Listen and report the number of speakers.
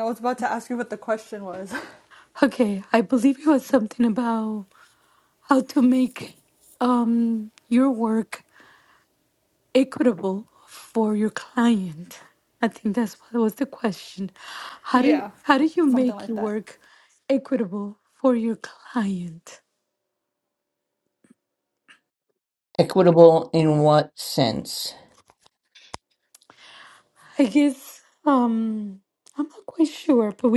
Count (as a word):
three